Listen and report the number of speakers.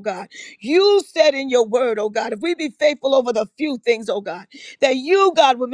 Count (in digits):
1